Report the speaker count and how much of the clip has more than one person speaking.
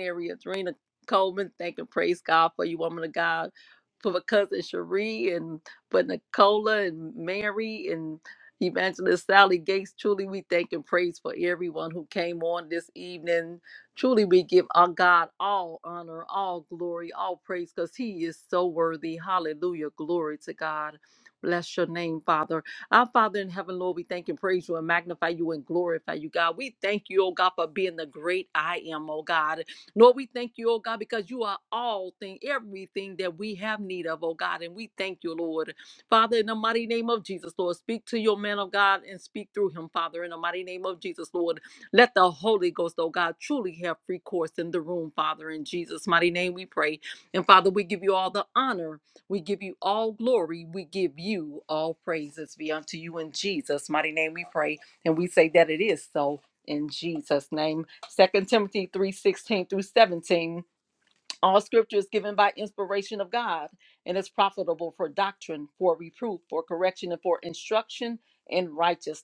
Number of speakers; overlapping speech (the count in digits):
1, no overlap